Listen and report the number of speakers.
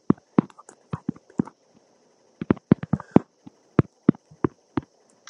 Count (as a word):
zero